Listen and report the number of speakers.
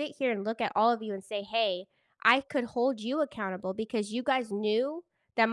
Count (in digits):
1